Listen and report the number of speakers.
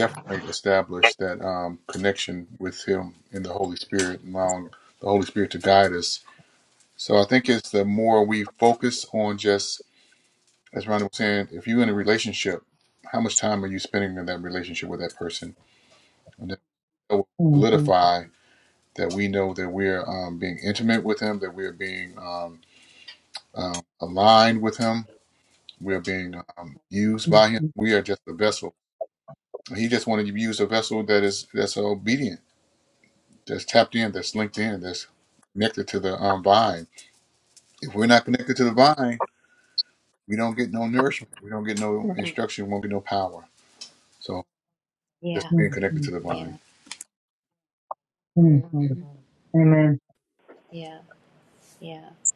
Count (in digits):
3